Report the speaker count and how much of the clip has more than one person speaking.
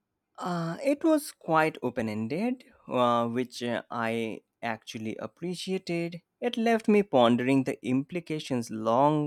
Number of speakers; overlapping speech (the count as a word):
one, no overlap